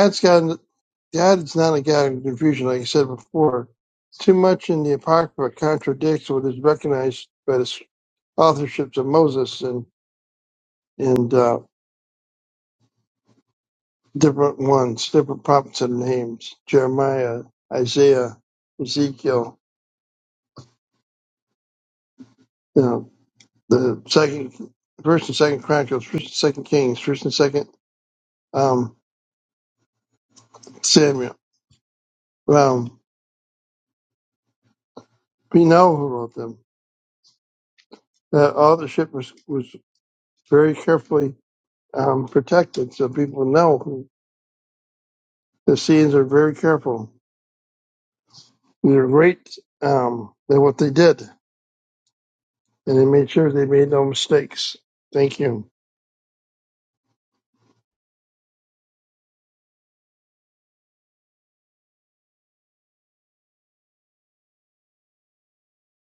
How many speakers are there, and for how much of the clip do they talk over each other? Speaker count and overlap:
1, no overlap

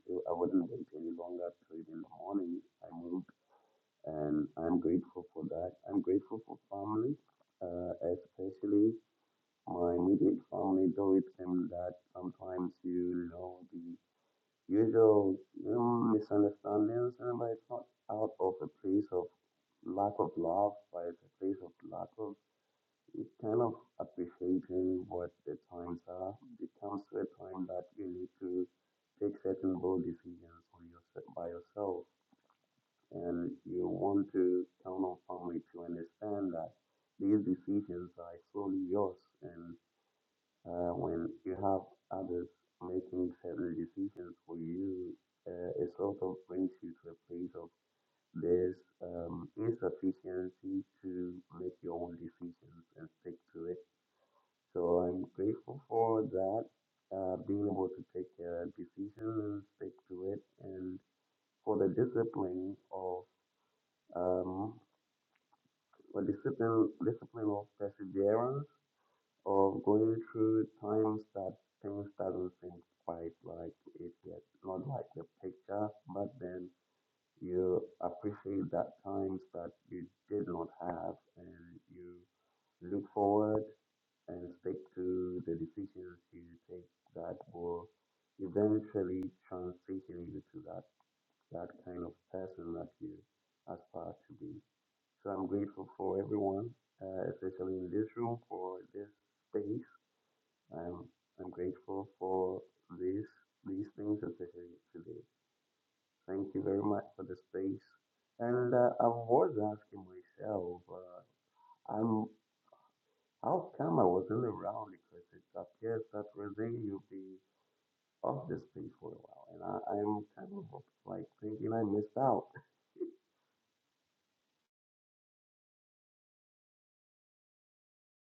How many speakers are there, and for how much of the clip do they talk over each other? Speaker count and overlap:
1, no overlap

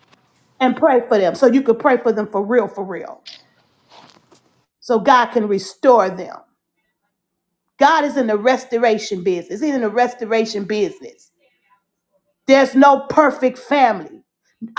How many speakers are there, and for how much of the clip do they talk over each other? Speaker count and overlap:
1, no overlap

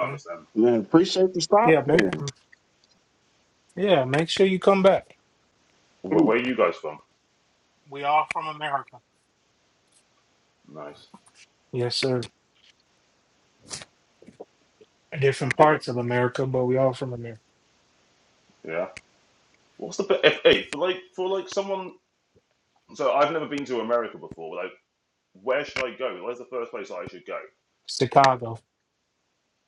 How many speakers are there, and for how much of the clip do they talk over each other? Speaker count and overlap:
3, about 4%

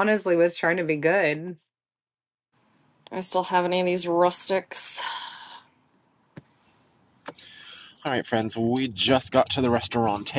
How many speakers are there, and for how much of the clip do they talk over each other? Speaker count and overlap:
3, no overlap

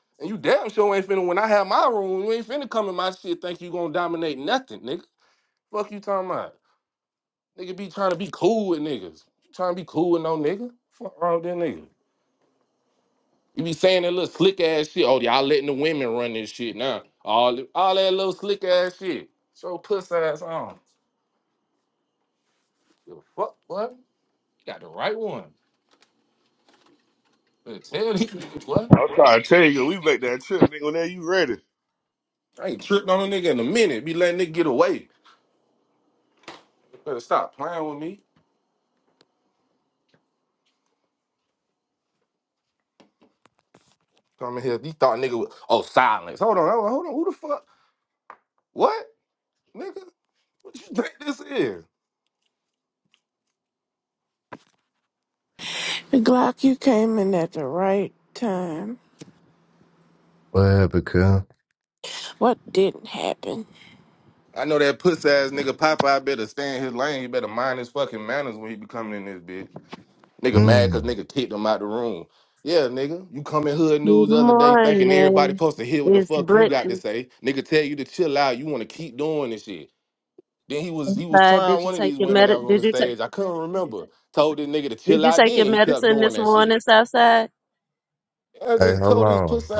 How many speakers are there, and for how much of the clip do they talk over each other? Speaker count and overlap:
5, about 8%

